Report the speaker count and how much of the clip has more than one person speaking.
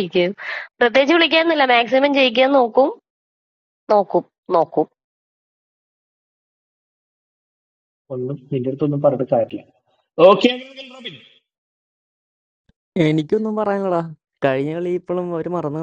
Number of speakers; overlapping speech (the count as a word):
three, no overlap